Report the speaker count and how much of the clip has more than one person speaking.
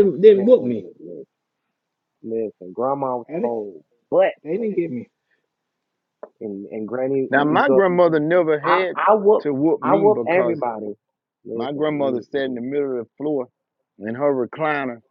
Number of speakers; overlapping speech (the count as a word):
three, about 21%